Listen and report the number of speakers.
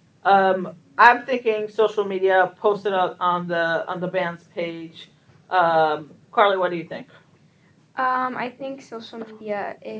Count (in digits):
2